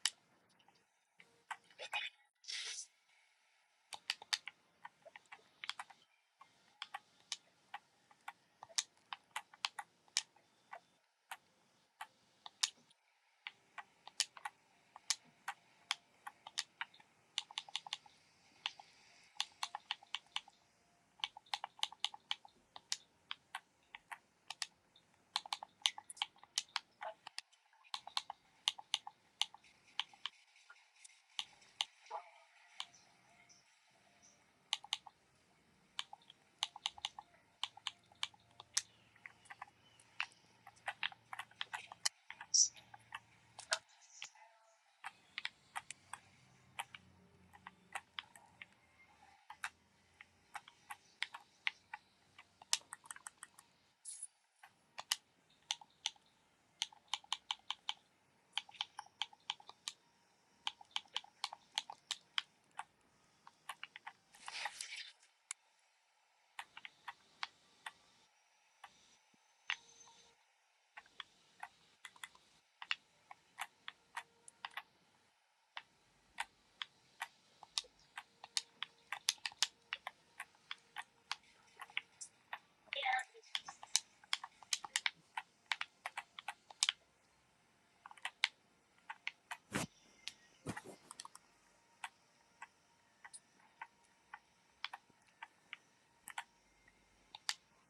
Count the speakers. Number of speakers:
zero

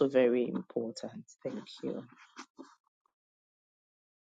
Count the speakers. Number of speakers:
one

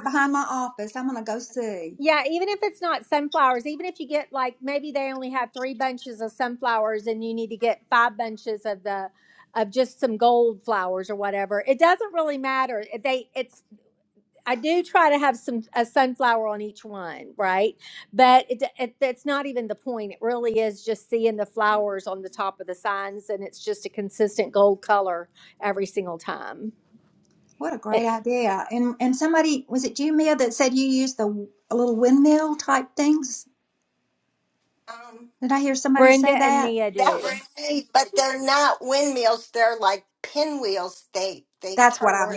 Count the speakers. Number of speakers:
three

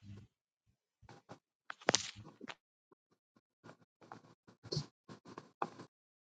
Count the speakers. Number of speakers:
zero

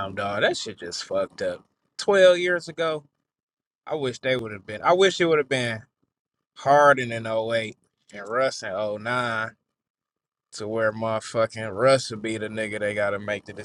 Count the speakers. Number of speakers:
one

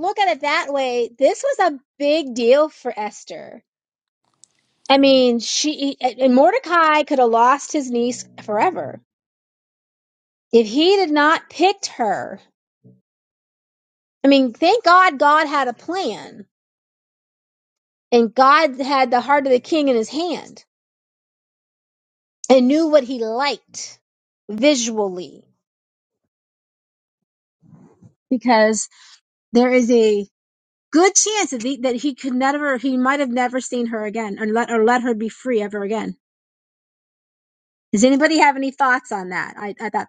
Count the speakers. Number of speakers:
one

